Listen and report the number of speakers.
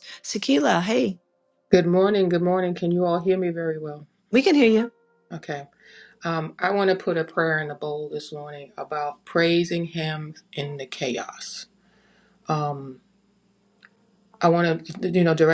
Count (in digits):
2